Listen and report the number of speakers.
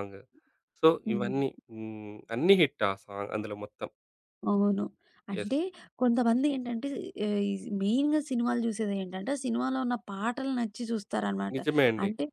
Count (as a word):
two